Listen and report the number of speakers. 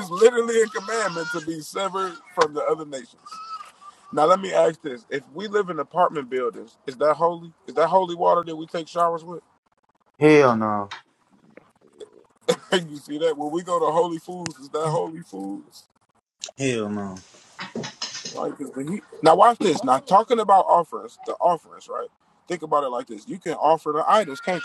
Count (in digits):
2